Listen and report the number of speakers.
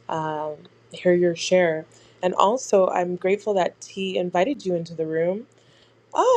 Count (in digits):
1